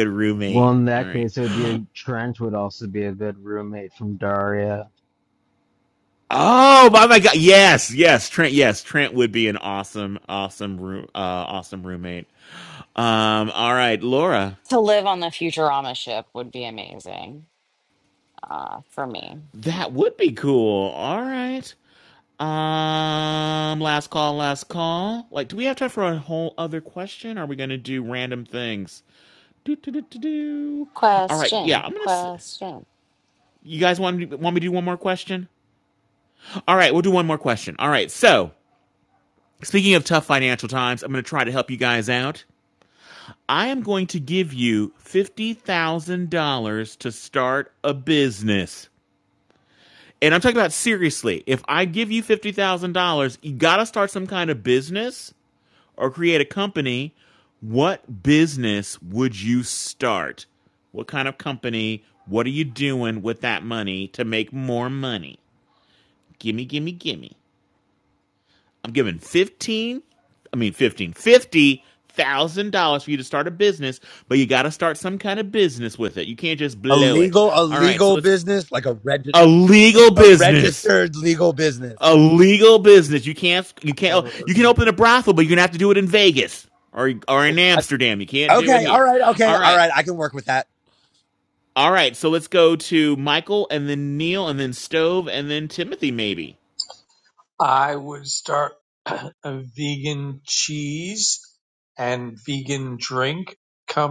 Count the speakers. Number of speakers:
5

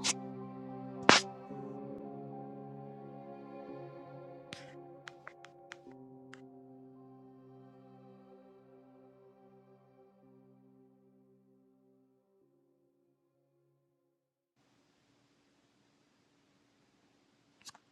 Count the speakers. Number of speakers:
0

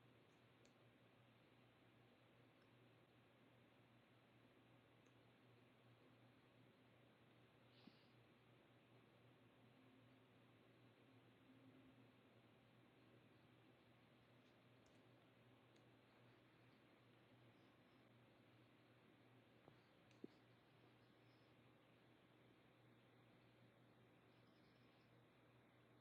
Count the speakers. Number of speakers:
0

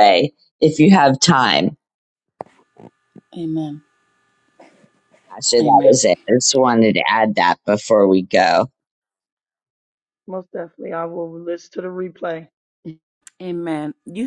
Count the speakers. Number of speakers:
3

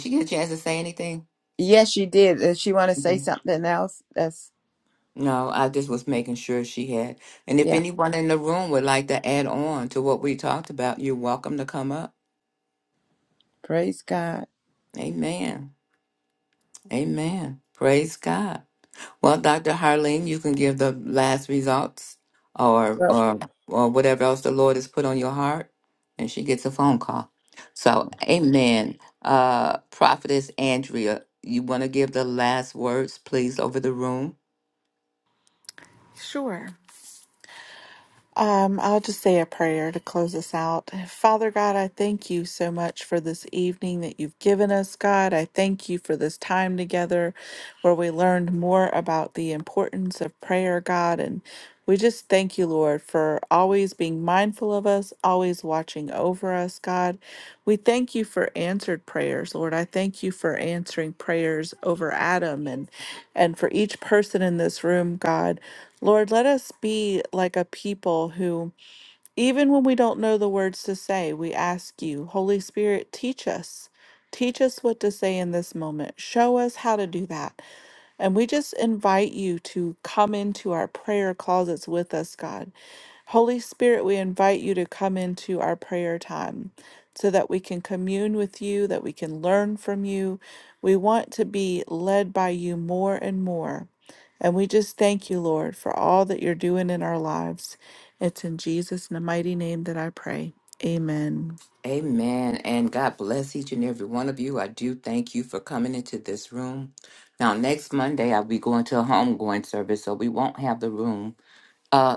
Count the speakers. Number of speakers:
3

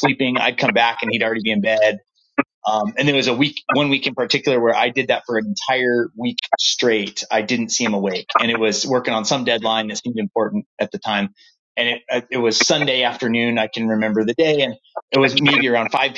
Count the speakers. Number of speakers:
1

